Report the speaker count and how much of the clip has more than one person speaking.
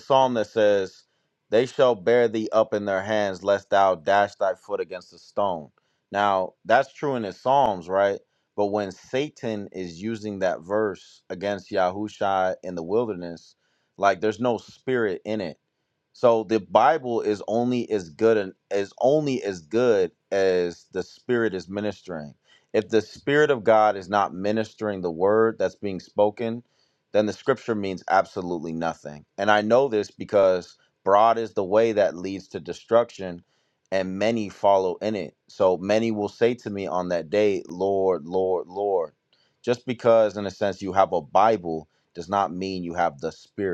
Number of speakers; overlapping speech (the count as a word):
one, no overlap